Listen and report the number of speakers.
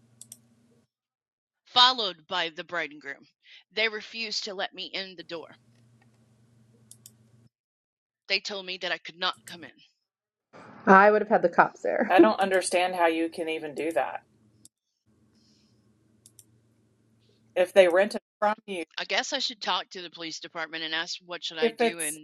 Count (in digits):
3